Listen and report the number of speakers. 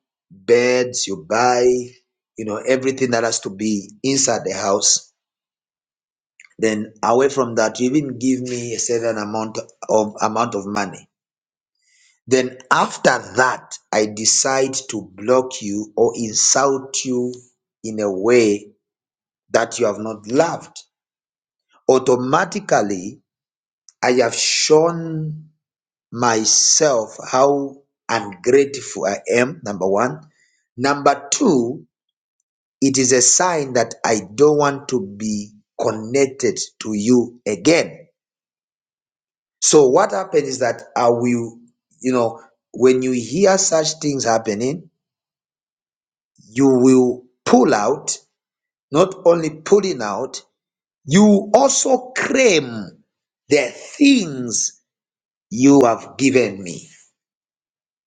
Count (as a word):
one